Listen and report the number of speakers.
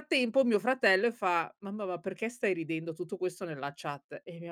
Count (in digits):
1